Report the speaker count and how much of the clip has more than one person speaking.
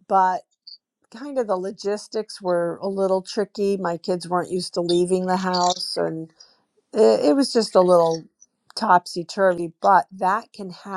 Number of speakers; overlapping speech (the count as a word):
one, no overlap